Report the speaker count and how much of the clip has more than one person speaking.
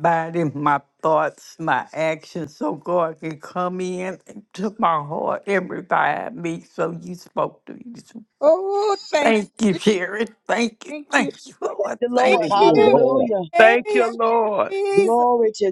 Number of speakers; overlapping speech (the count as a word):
four, about 20%